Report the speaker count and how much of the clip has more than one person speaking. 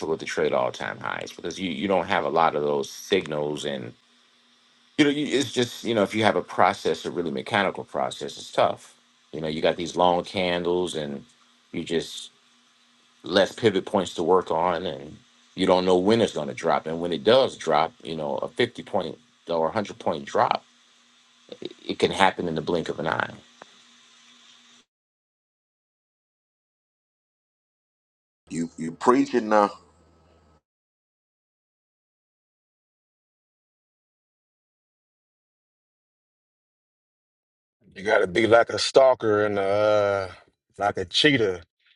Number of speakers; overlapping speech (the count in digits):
3, no overlap